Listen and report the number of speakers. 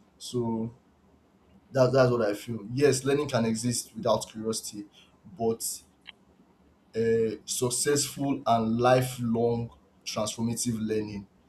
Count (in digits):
1